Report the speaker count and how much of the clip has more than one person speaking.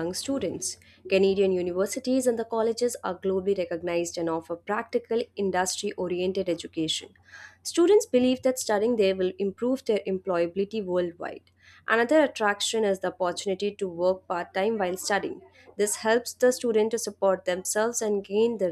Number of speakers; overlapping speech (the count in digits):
1, no overlap